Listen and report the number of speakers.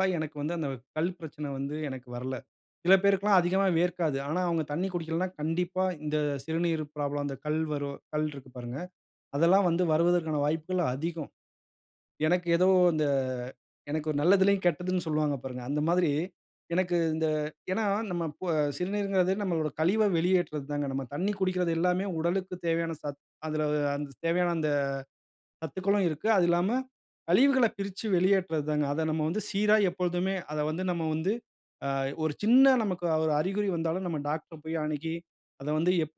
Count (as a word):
one